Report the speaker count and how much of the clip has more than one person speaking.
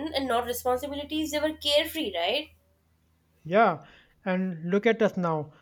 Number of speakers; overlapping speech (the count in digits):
2, no overlap